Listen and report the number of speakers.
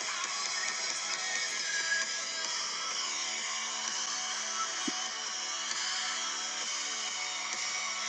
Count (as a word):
zero